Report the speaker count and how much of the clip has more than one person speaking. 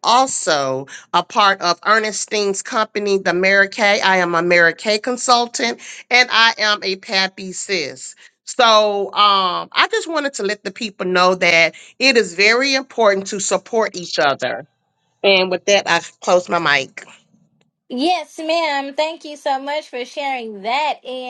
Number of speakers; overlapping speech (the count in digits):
2, no overlap